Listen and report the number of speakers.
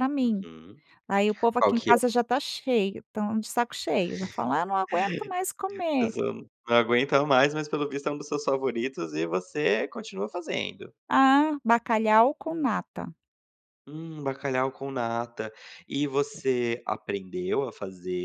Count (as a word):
two